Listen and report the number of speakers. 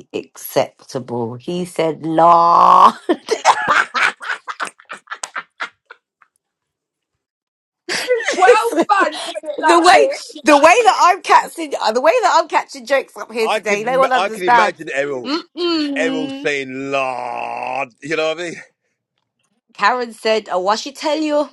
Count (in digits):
3